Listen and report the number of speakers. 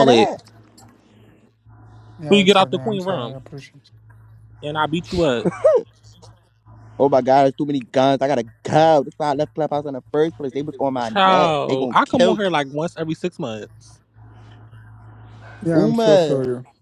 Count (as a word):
three